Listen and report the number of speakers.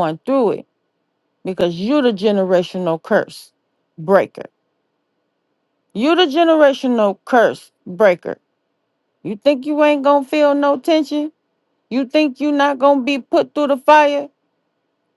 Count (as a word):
one